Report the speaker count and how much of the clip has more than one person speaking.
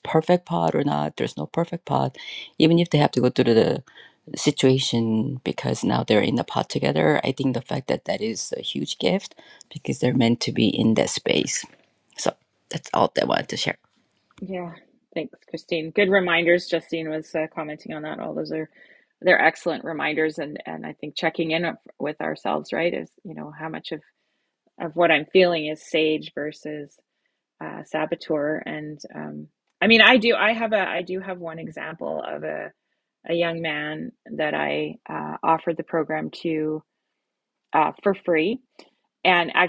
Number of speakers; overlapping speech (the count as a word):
two, no overlap